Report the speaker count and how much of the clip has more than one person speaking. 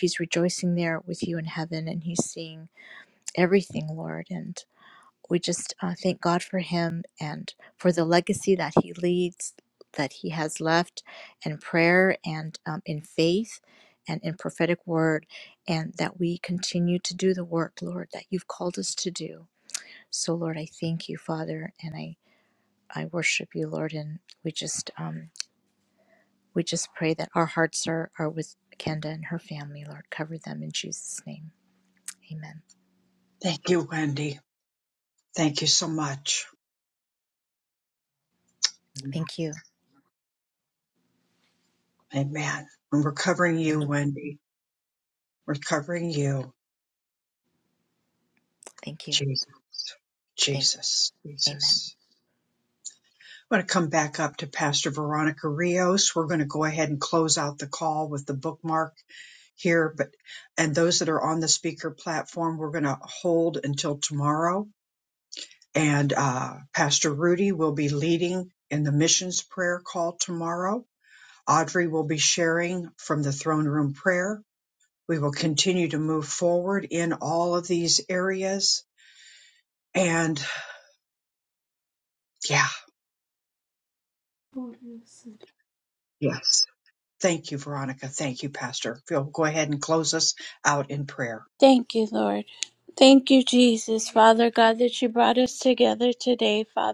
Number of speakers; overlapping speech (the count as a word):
three, about 1%